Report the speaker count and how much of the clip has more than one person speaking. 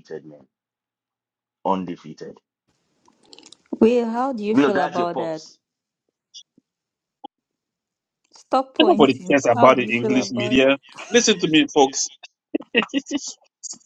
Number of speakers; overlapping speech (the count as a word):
three, about 19%